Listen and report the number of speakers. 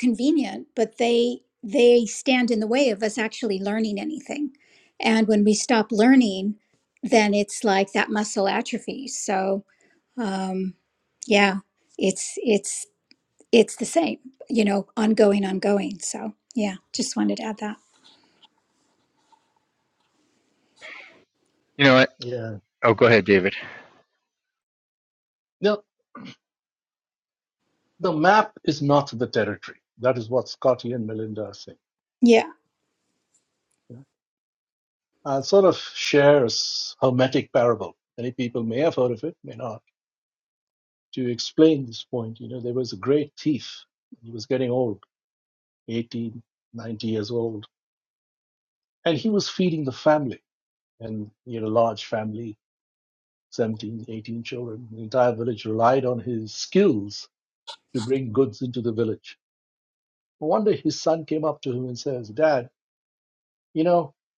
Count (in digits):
3